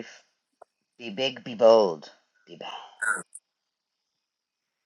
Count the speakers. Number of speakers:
1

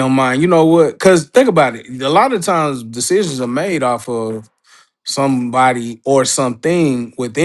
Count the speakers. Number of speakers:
1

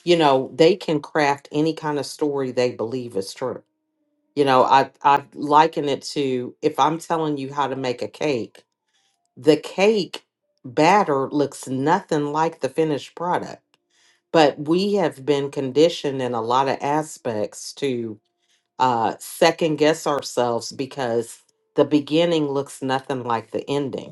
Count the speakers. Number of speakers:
1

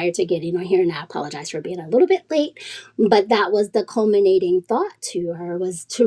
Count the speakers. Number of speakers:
1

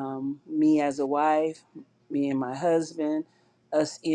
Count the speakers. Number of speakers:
1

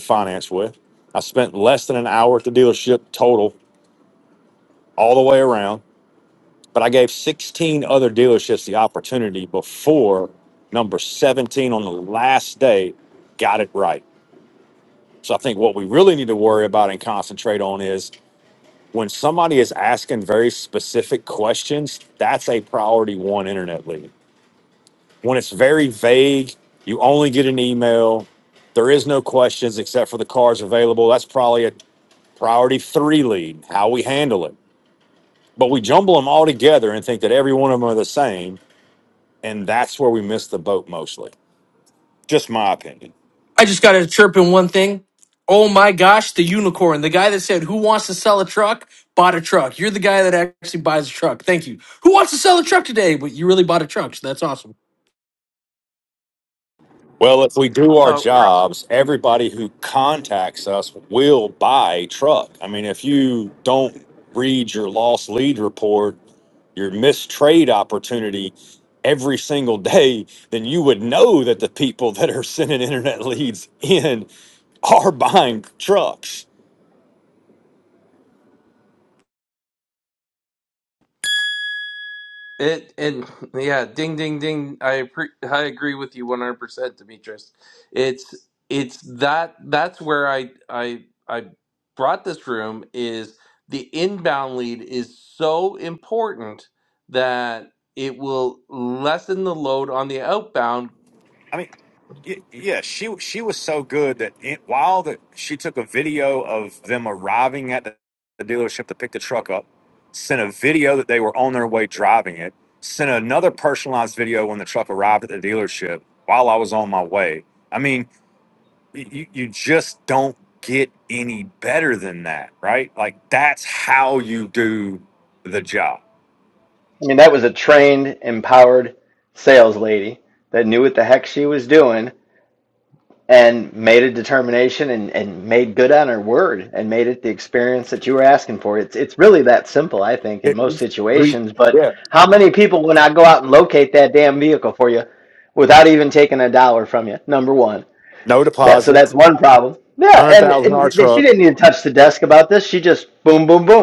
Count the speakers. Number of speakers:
4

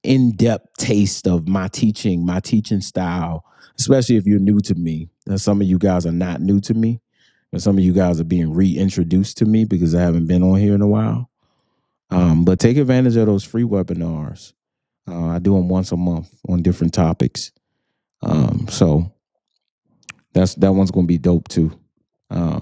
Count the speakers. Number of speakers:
1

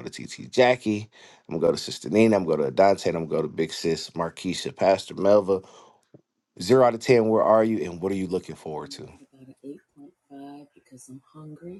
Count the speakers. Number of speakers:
2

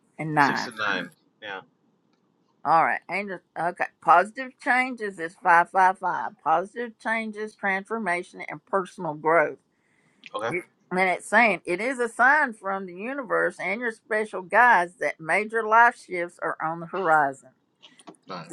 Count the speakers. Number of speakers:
2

